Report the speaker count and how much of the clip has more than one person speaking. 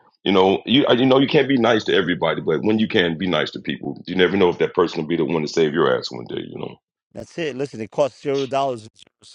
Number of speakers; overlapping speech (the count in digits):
2, no overlap